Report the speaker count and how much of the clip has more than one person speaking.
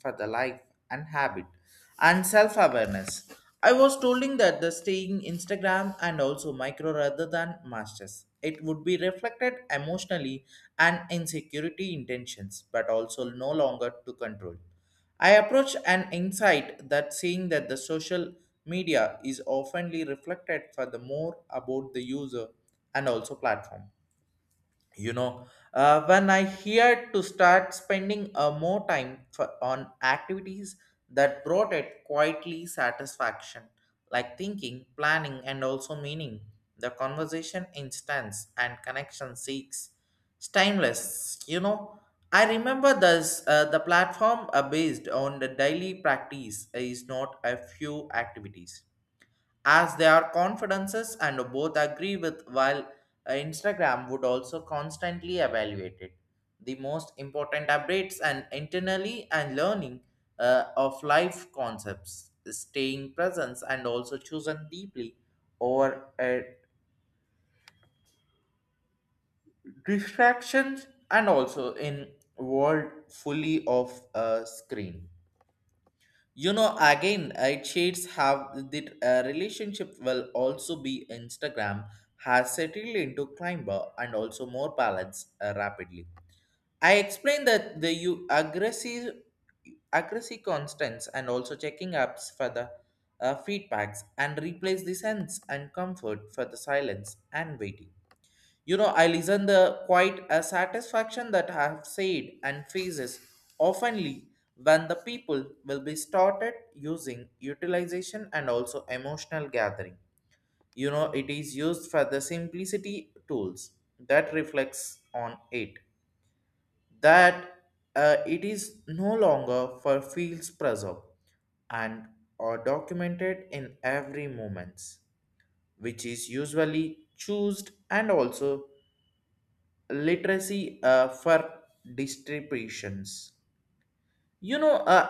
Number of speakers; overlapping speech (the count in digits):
1, no overlap